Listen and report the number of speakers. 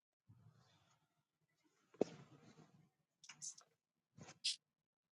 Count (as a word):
zero